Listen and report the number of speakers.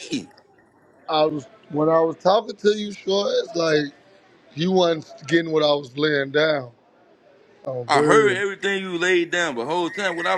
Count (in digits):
2